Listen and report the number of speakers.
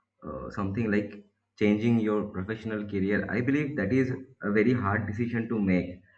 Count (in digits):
1